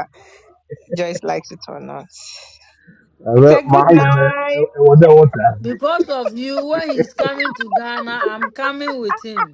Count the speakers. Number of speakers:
3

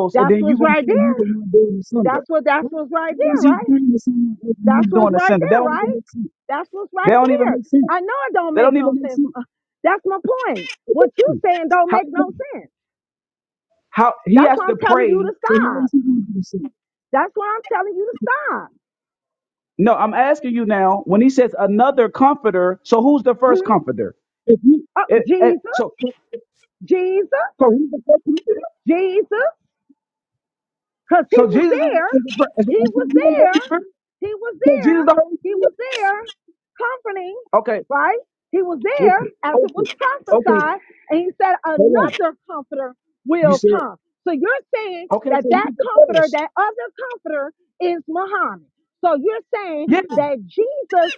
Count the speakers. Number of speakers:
2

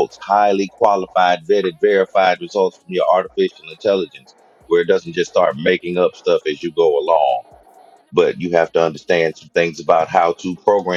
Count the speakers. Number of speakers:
2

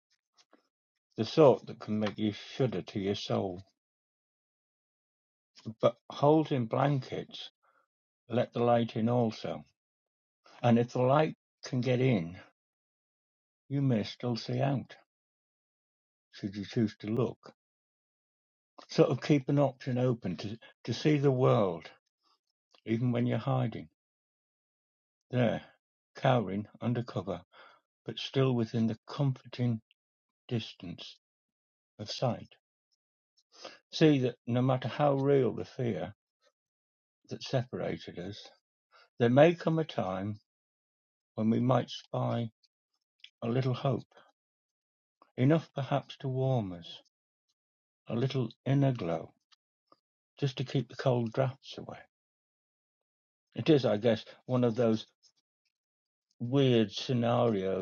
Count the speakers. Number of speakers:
1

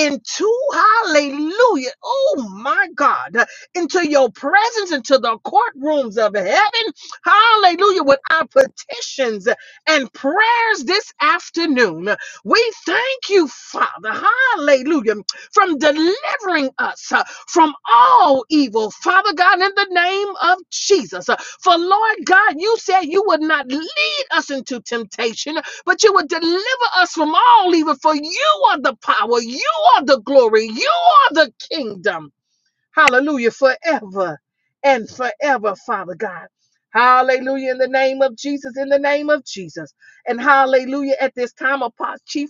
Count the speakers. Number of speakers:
1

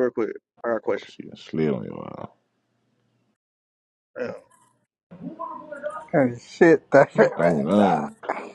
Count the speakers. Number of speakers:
3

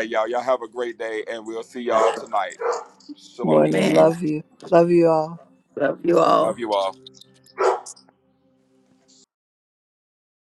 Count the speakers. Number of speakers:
3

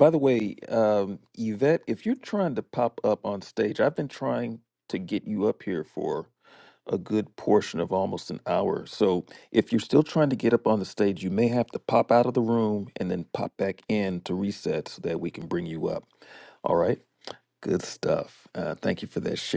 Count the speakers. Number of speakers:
1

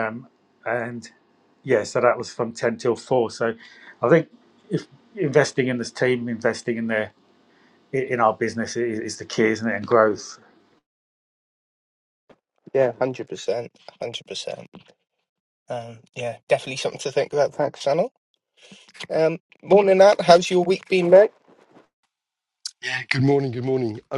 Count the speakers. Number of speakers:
3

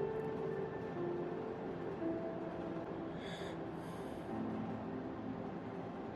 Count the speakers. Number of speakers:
0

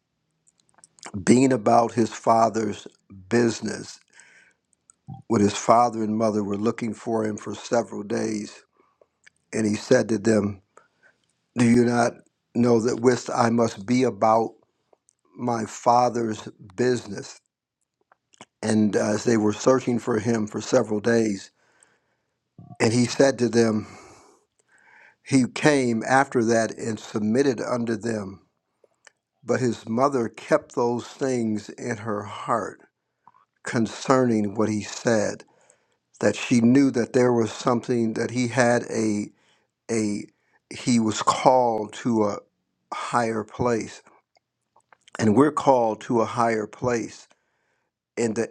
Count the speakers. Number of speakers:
1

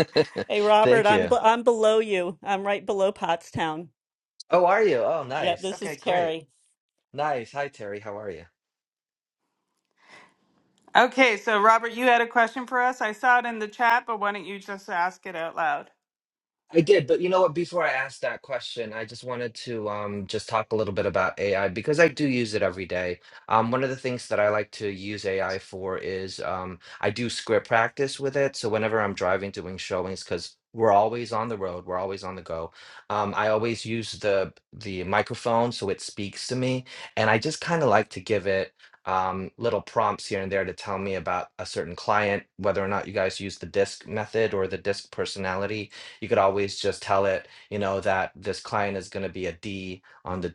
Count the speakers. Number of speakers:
3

